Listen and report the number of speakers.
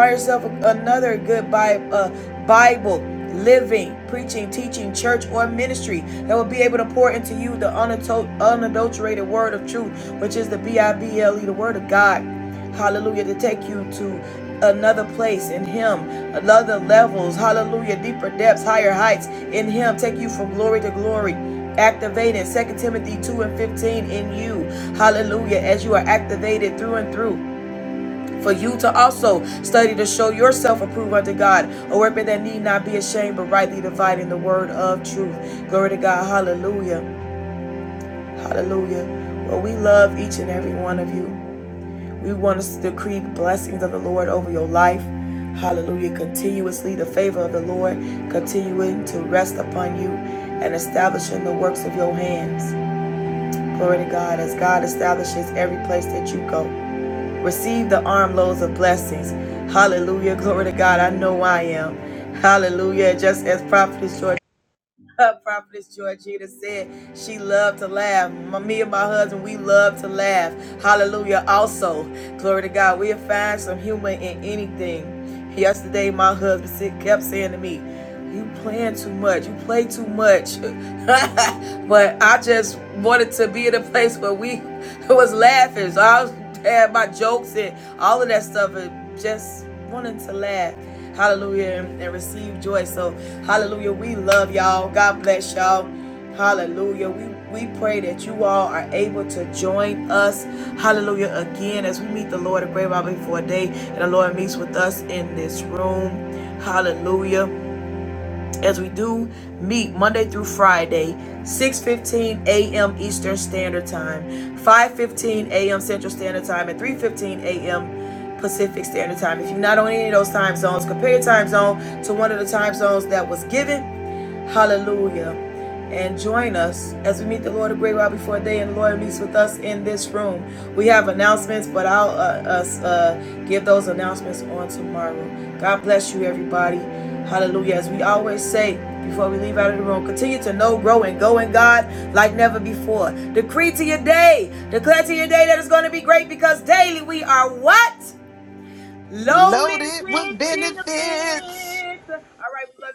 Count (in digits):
2